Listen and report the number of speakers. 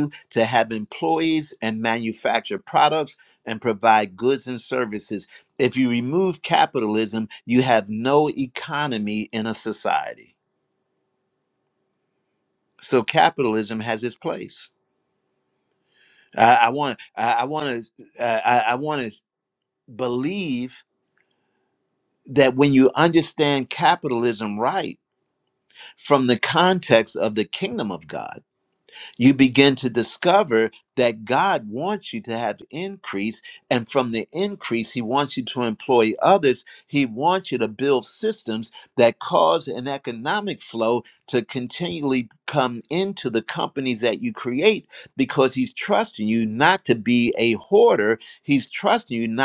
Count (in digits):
1